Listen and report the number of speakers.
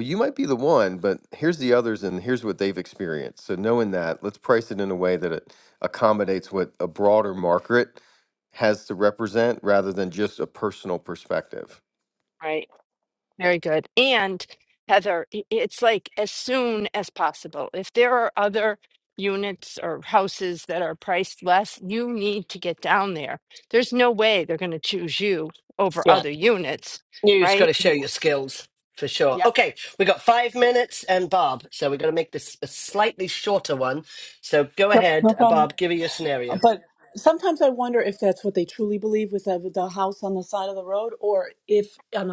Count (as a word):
four